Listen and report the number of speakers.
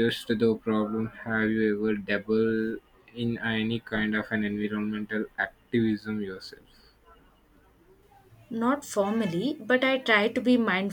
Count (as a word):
two